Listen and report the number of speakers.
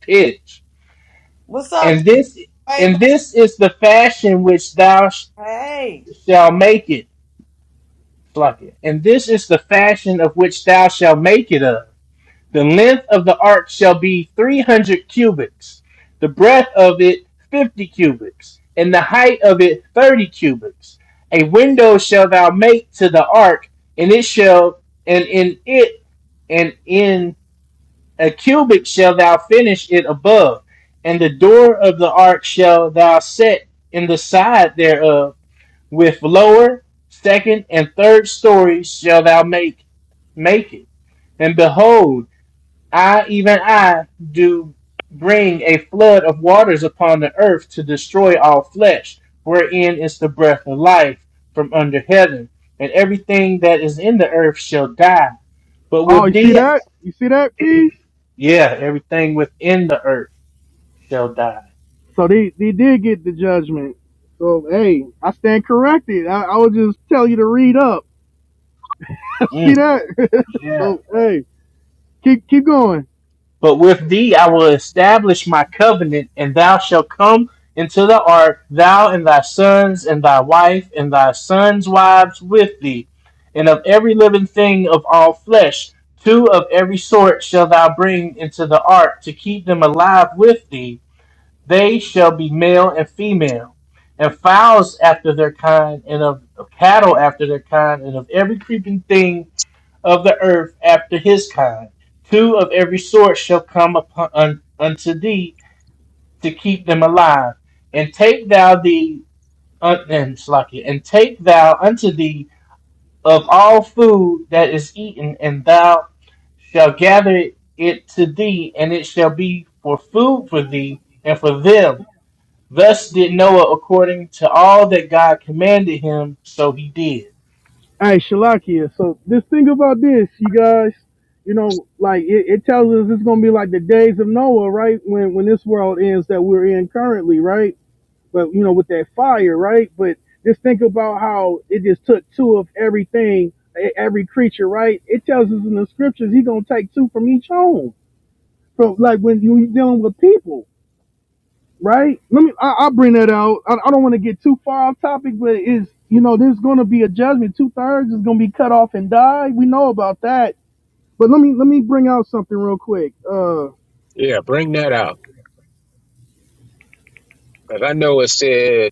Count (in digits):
4